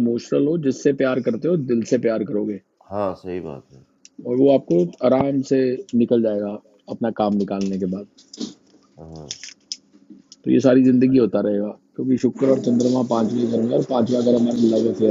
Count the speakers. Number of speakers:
2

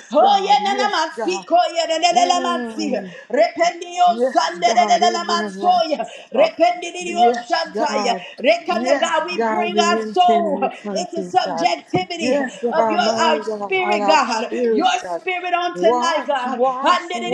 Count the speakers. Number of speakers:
2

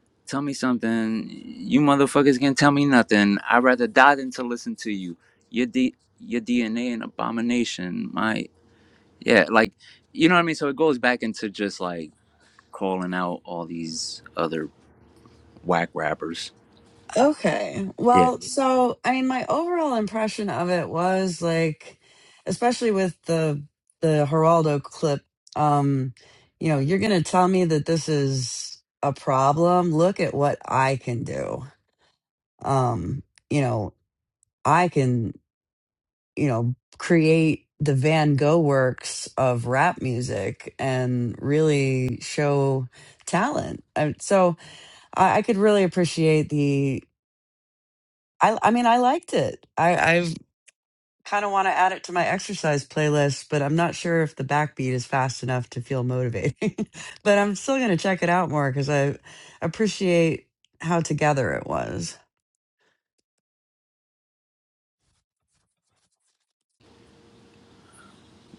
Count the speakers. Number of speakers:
2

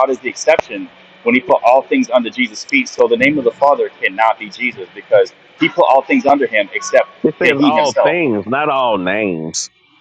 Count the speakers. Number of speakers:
2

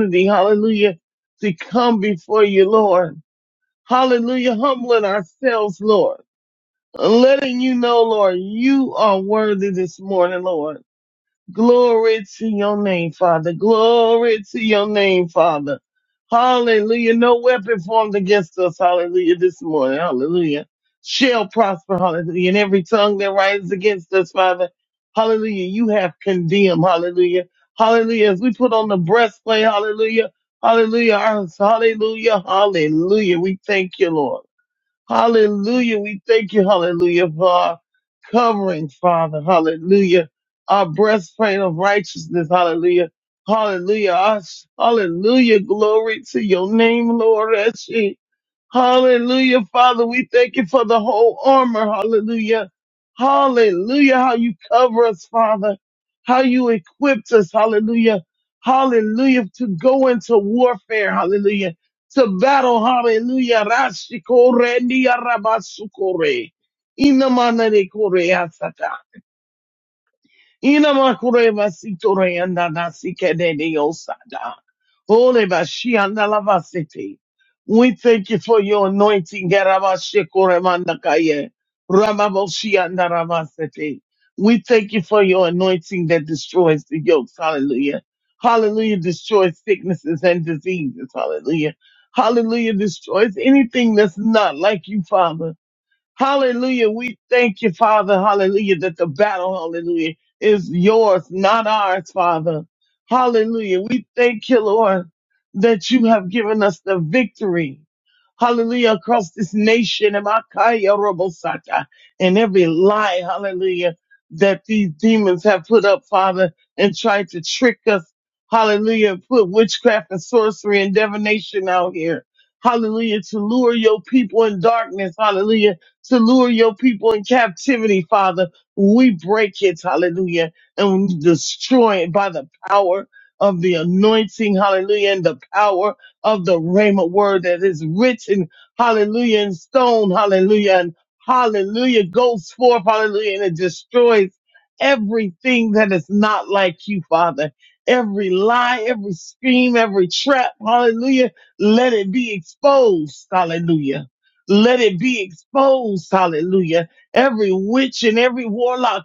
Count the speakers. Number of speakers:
1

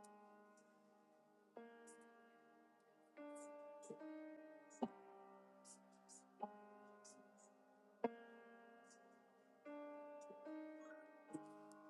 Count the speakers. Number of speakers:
0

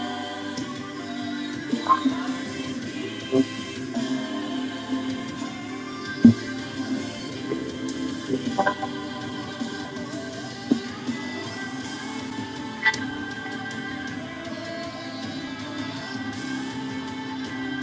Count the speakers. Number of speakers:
0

